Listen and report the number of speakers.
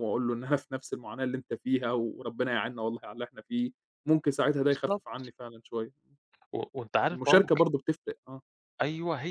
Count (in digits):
2